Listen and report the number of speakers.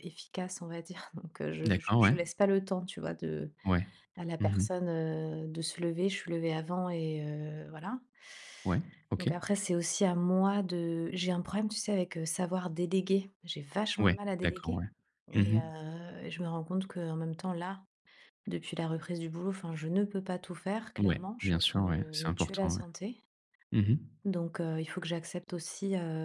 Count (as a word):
two